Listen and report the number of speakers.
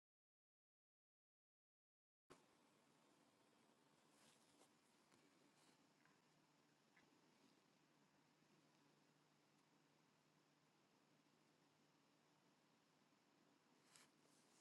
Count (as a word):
zero